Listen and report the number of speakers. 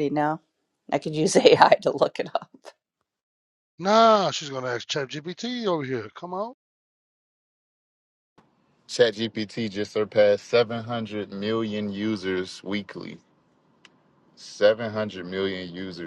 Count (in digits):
3